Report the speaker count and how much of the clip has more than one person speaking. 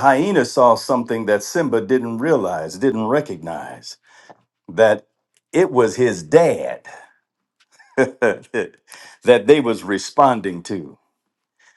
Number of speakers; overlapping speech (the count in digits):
1, no overlap